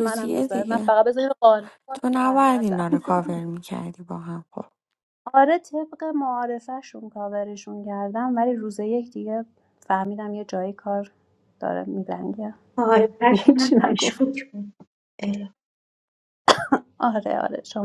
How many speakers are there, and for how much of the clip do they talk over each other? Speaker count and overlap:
three, about 15%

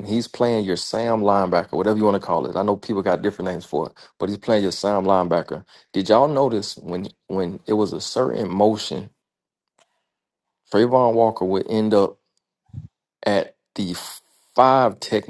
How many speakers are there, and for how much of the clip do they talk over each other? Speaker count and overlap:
one, no overlap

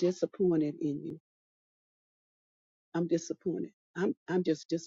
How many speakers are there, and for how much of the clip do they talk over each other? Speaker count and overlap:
one, no overlap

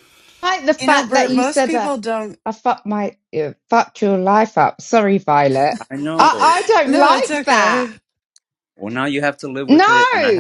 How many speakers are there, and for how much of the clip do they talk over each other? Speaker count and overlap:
three, about 31%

